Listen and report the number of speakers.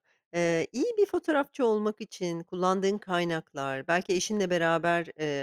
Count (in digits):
1